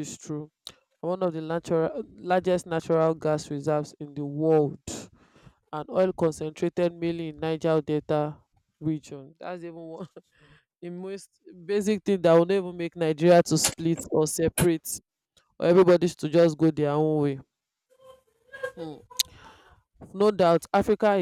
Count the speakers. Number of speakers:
one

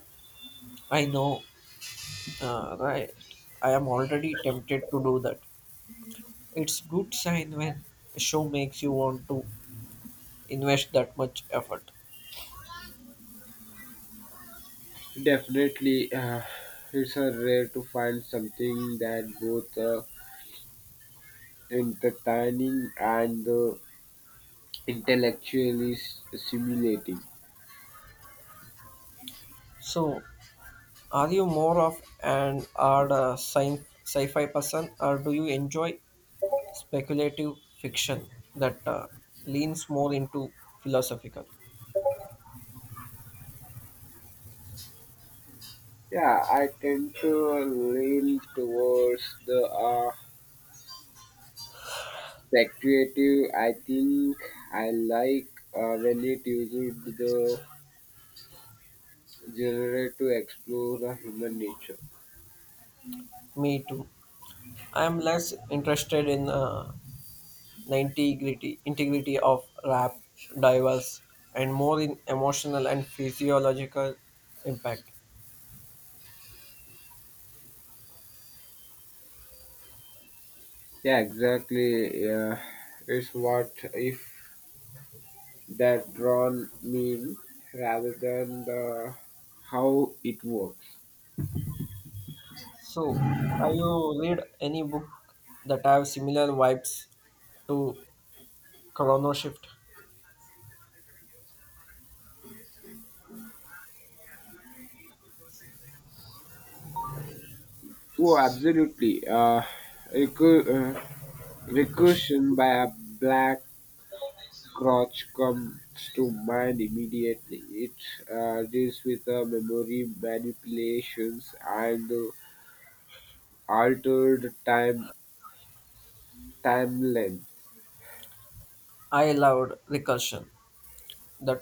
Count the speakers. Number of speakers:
two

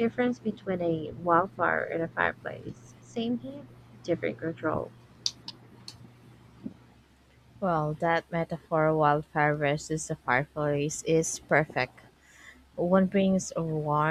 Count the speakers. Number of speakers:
two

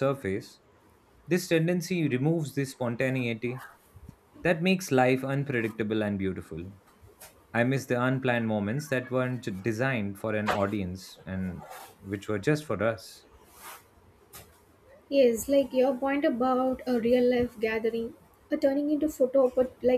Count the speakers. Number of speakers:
two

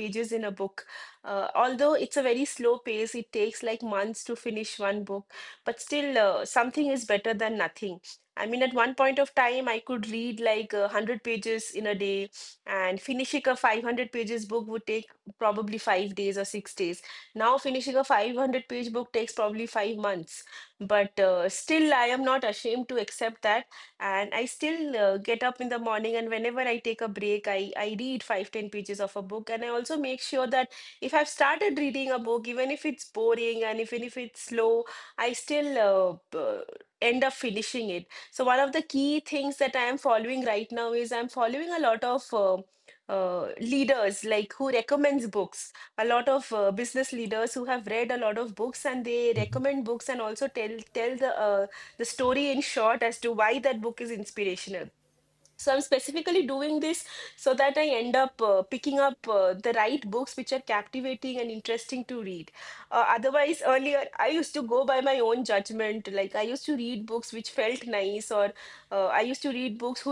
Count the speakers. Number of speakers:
one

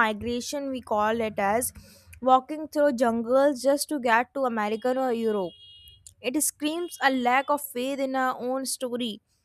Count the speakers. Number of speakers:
one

